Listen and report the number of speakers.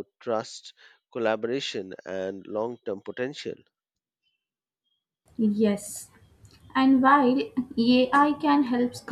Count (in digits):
2